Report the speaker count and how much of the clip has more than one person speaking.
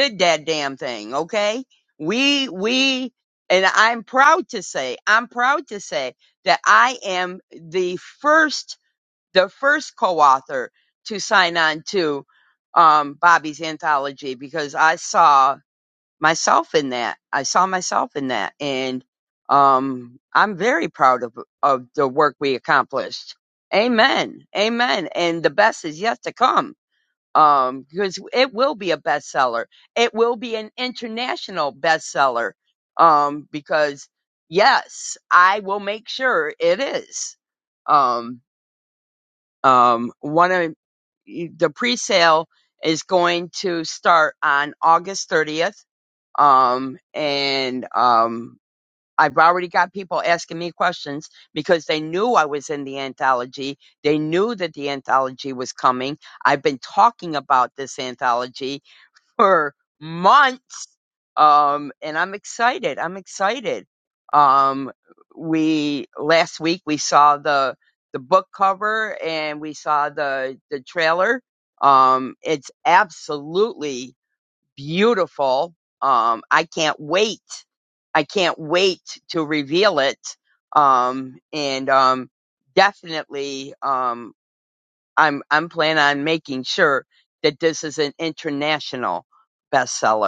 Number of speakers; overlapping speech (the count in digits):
1, no overlap